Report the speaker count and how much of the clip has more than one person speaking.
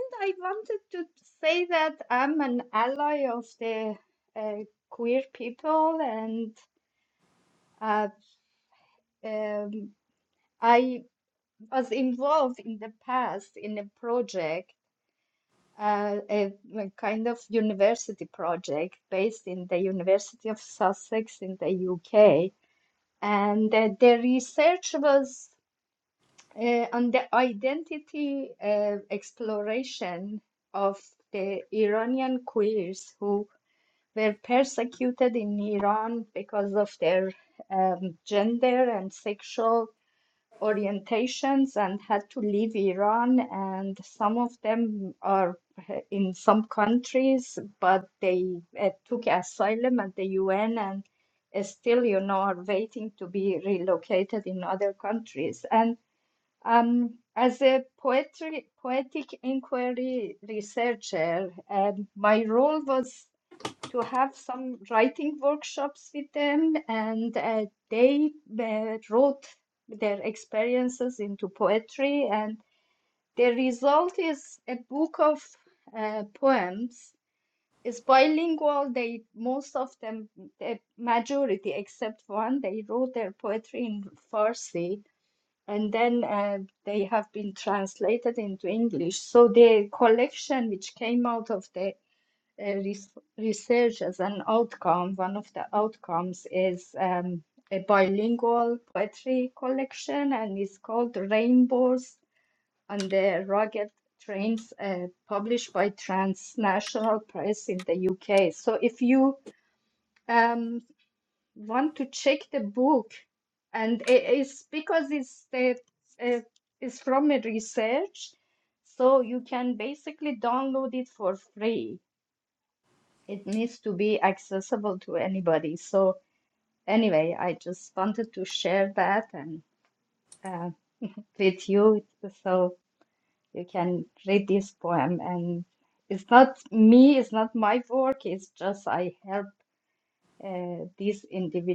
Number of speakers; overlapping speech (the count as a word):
one, no overlap